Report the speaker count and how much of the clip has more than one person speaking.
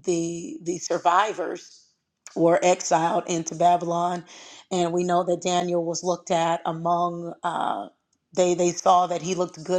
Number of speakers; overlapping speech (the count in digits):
1, no overlap